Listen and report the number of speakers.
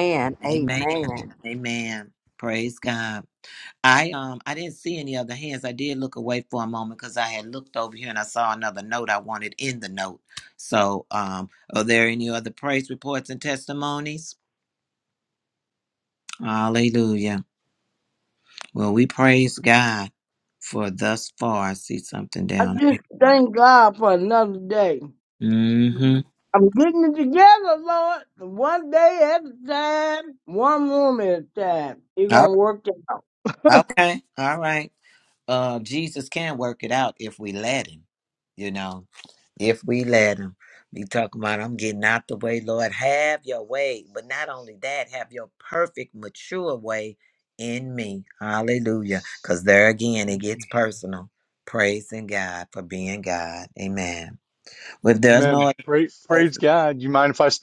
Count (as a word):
four